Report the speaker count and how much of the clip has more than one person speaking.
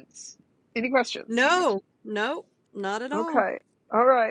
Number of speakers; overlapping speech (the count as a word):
two, about 7%